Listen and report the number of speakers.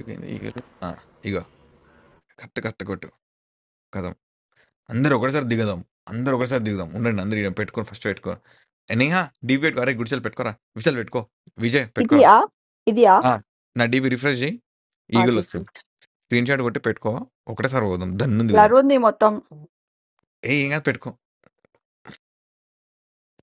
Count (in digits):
2